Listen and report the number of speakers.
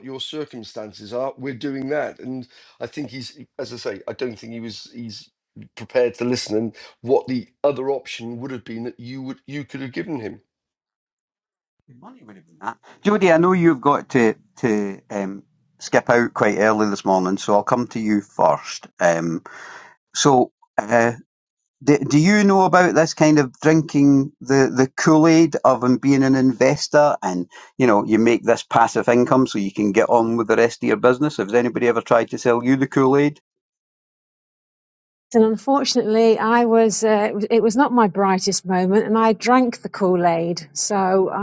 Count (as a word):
three